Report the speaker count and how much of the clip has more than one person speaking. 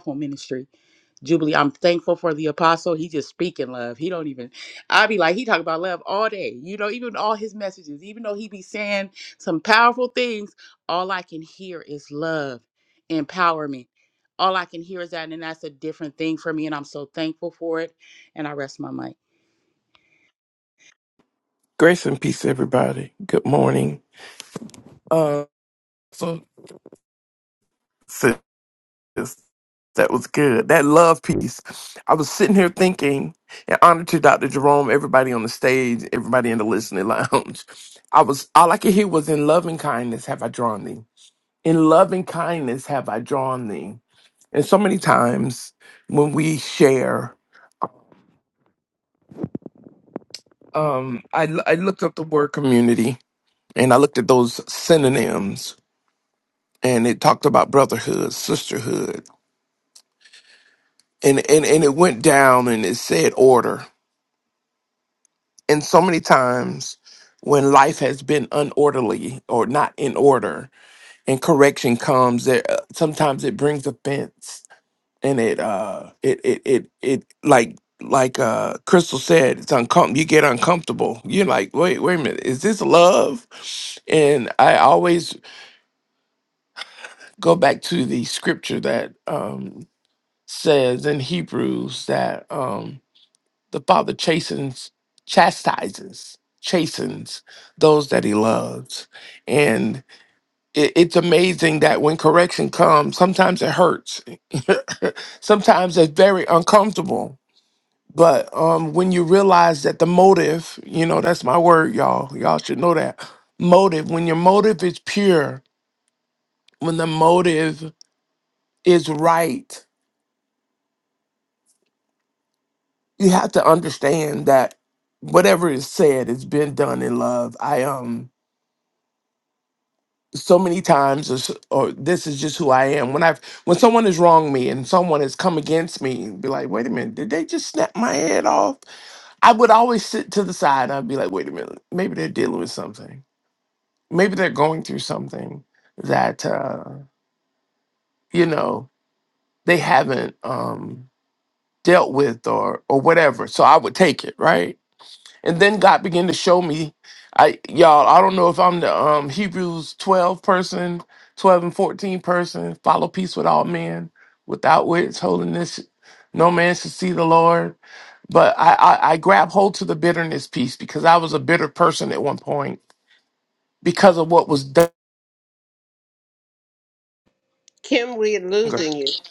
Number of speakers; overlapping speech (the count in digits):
3, under 1%